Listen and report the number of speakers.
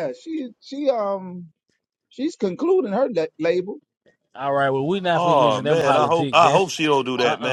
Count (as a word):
three